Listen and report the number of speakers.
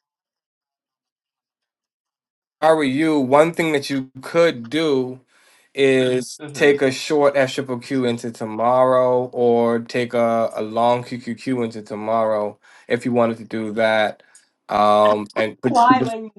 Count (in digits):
2